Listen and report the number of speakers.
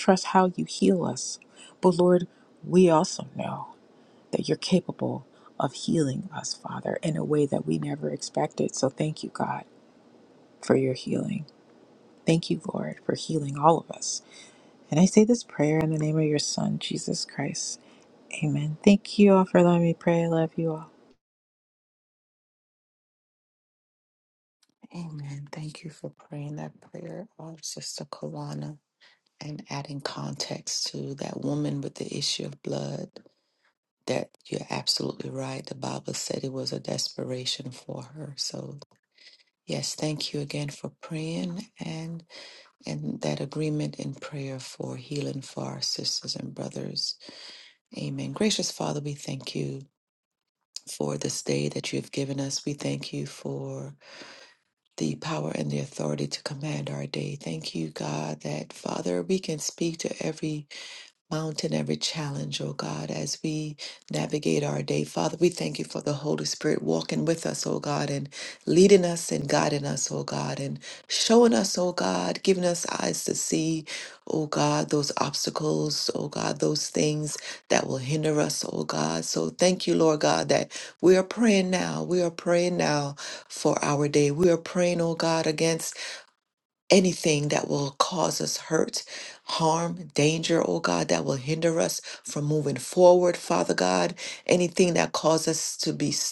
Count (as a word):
two